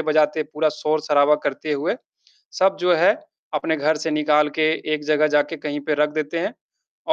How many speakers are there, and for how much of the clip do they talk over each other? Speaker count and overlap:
1, no overlap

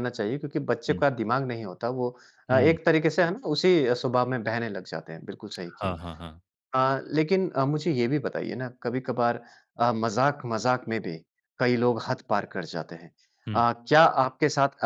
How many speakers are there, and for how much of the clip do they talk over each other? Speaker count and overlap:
2, about 4%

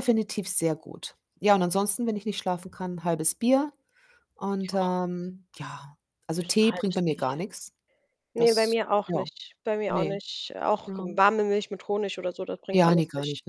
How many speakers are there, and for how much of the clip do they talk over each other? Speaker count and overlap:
2, about 22%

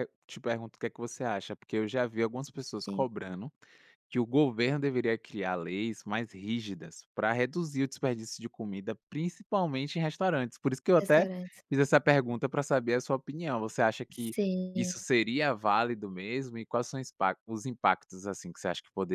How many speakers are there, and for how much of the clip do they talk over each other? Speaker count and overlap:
2, about 3%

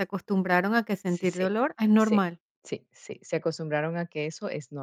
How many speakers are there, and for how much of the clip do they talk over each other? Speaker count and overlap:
2, about 11%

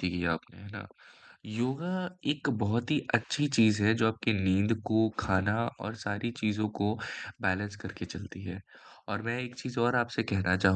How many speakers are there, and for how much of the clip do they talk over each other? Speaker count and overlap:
1, no overlap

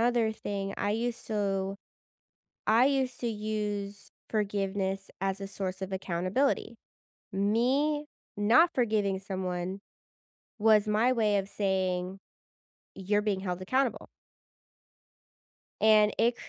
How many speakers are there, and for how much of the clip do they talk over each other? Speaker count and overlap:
1, no overlap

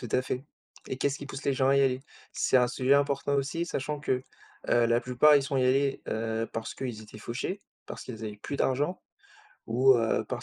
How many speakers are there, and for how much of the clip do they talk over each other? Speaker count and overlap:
1, no overlap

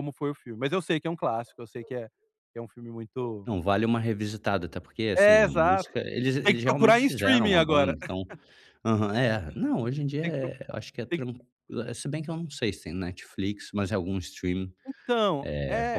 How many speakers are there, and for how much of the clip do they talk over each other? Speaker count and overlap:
2, about 21%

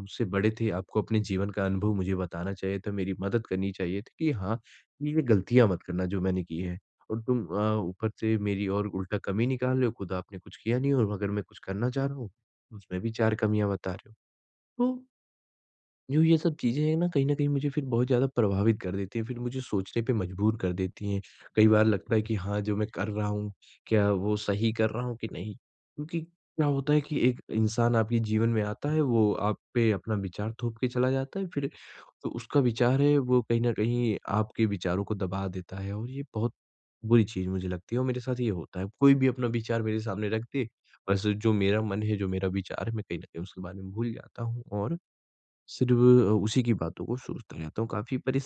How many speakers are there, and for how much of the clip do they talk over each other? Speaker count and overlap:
1, no overlap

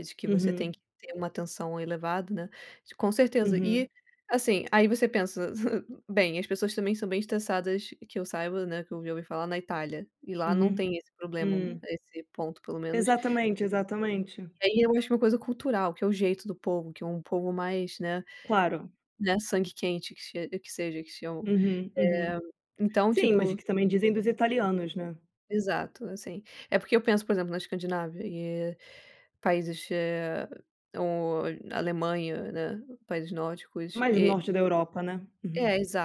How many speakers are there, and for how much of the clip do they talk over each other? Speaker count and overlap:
2, about 9%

